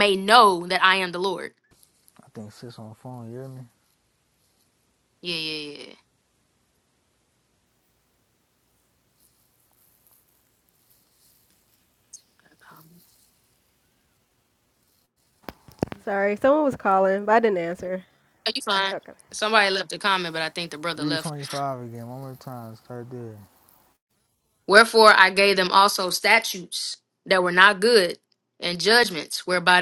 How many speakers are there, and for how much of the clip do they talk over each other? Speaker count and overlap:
3, about 1%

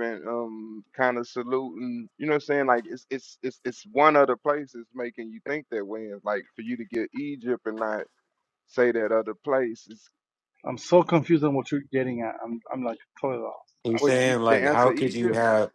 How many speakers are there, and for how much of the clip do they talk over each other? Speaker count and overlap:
3, about 9%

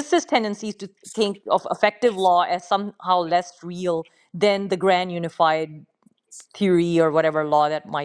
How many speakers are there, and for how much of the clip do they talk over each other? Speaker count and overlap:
1, no overlap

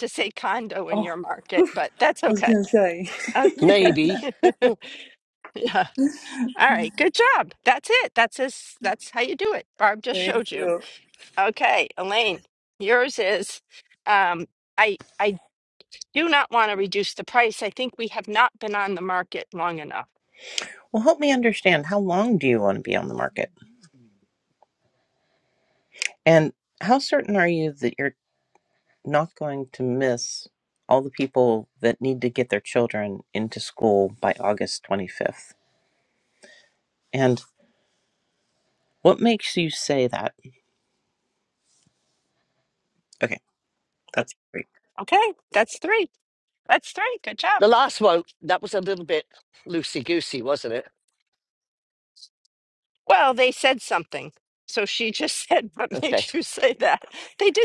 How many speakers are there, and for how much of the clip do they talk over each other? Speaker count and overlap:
4, about 3%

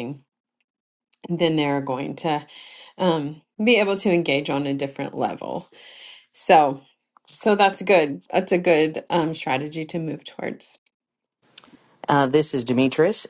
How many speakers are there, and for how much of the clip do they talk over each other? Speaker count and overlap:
2, no overlap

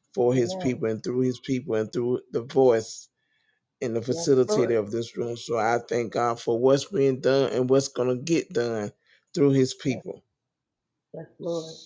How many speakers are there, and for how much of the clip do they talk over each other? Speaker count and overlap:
2, about 11%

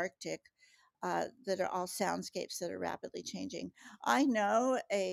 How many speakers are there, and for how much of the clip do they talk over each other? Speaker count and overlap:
1, no overlap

